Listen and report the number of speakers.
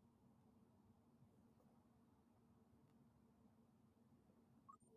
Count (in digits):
0